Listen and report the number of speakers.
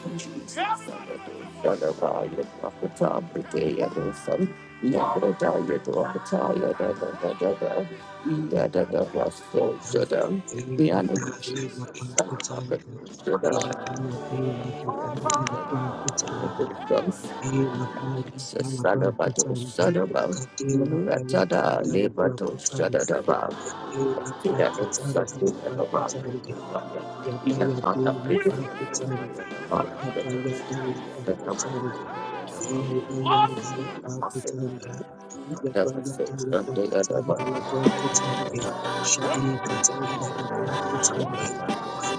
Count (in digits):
2